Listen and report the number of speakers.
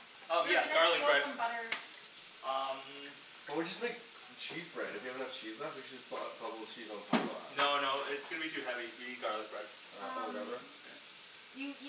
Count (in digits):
3